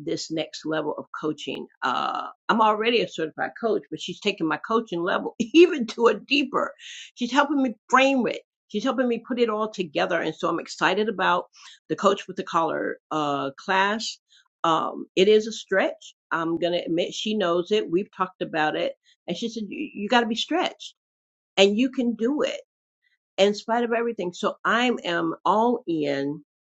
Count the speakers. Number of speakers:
one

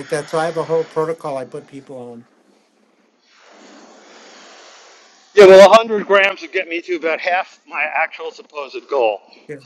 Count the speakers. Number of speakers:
two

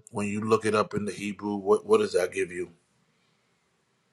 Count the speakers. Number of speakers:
one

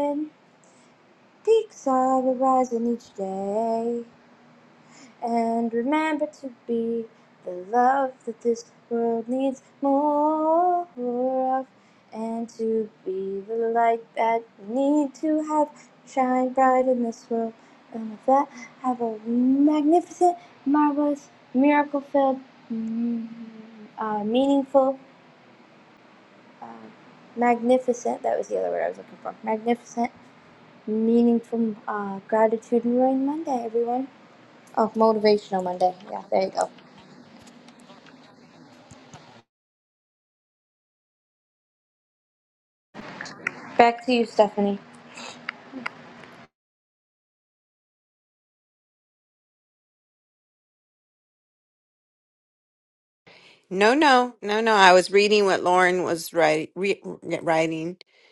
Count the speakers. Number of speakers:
two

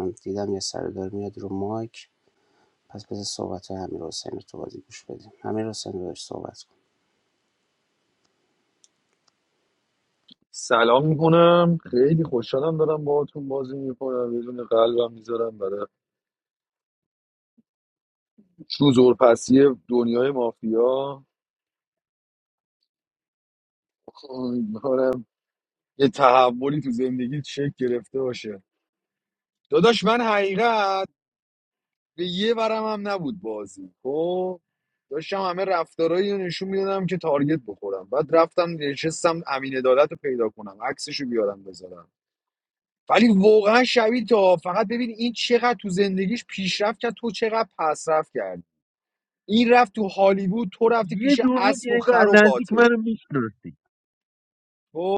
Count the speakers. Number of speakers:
three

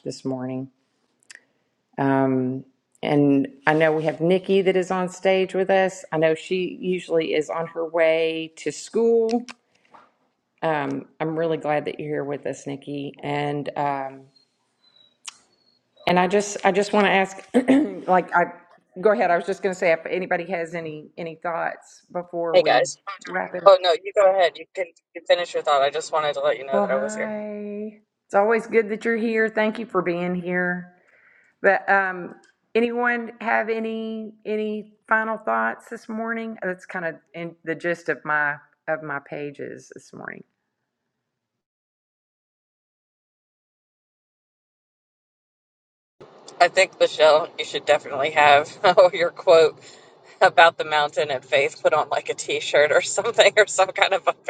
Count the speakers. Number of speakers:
two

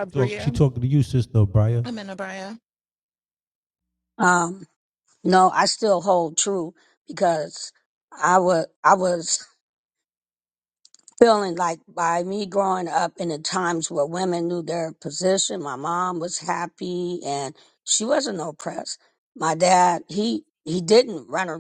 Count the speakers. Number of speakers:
three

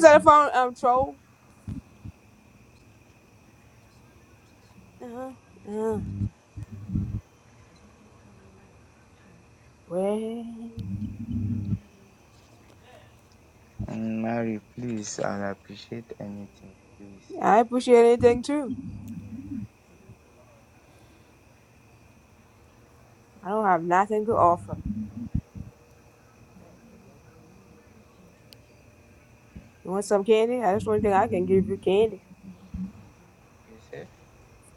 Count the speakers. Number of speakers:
two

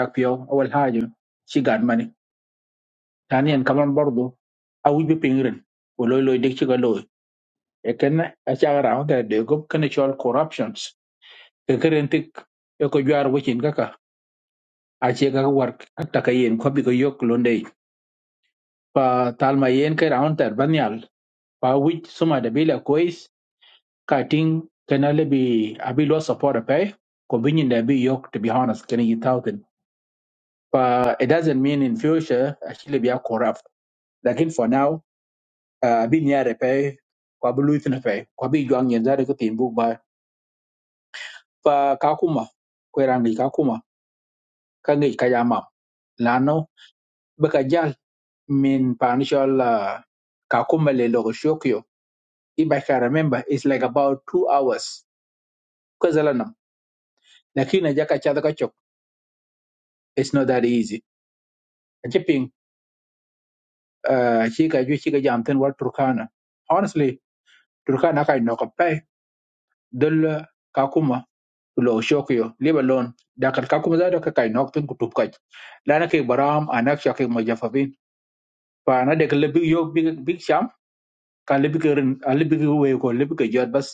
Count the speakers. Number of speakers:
one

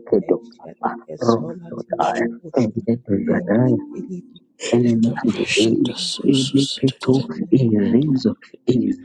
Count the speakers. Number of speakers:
three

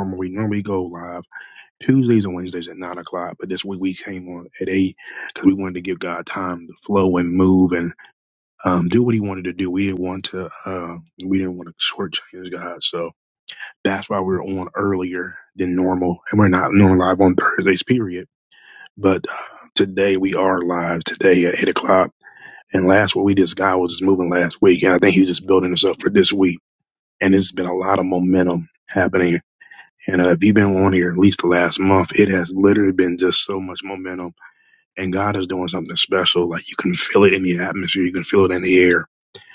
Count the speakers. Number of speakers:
one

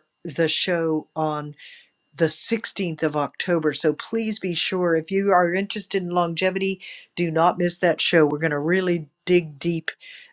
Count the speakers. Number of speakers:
one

